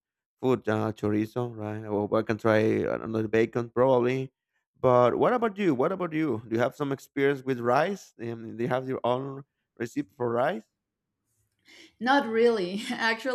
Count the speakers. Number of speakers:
two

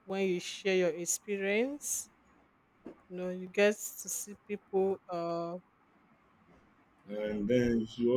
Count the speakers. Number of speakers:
two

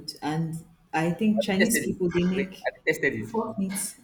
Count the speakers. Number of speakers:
two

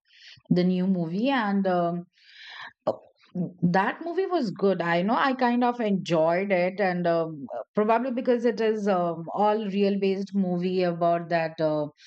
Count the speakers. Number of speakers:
one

